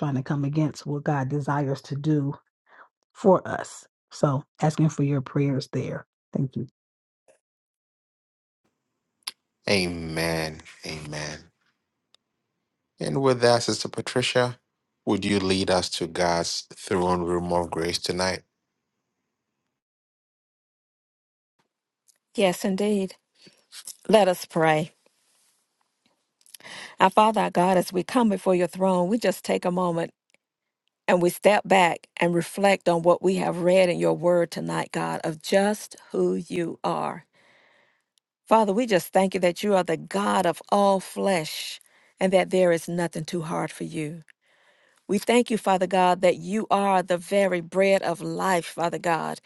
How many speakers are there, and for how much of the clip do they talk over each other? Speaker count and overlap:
three, no overlap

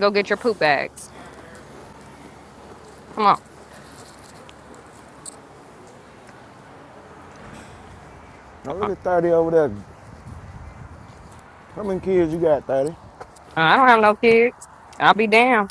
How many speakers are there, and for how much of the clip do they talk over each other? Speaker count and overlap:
two, about 1%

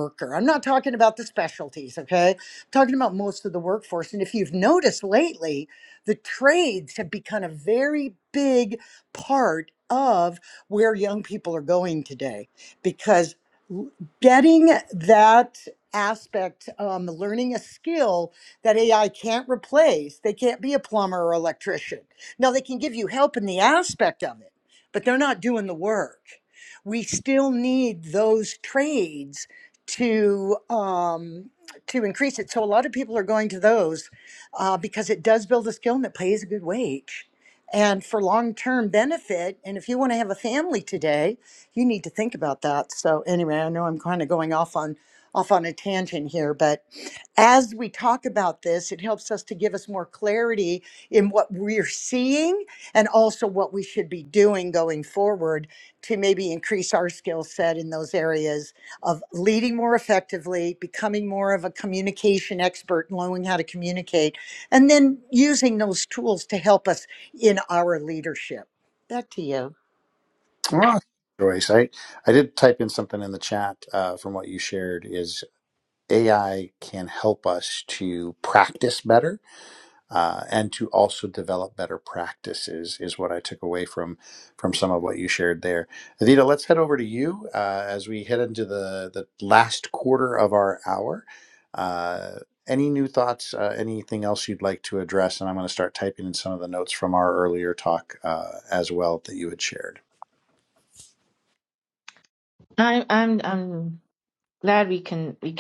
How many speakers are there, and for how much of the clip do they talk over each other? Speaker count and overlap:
three, no overlap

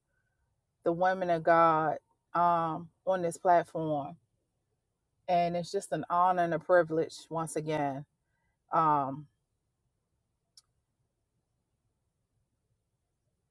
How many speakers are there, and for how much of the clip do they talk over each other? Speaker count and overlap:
one, no overlap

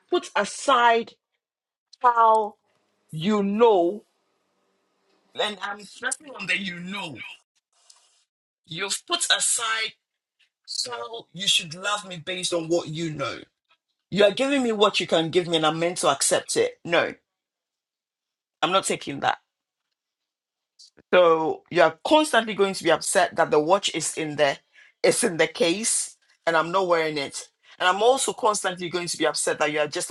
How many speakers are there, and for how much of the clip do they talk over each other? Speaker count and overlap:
one, no overlap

